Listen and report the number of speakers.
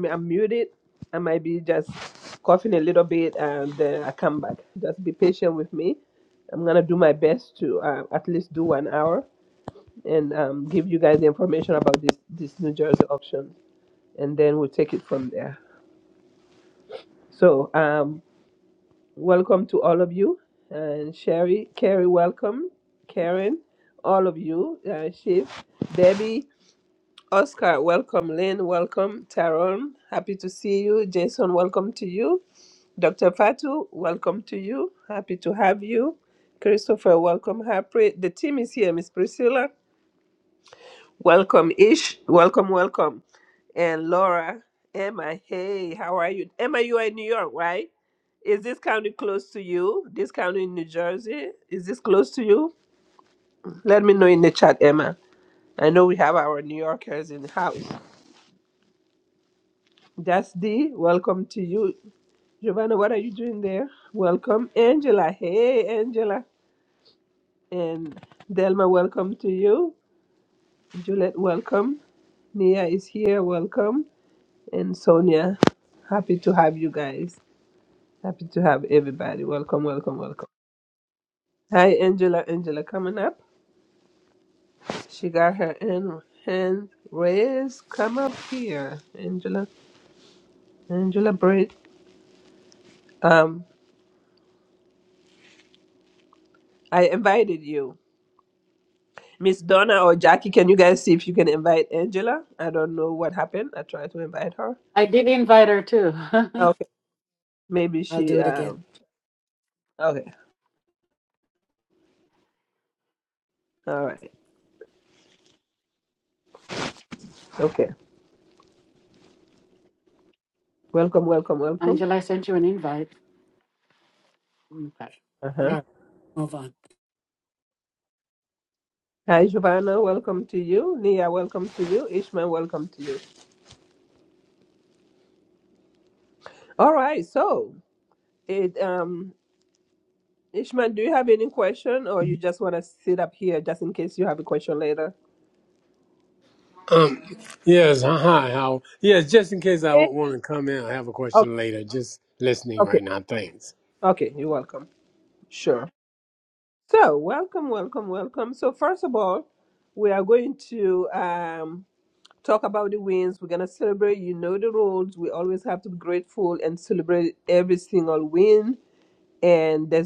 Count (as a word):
three